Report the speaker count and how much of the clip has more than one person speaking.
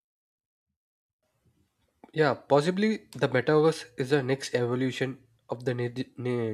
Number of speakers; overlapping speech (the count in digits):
1, no overlap